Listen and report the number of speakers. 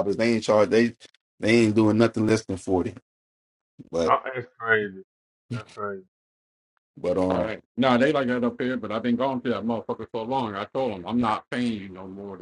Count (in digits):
3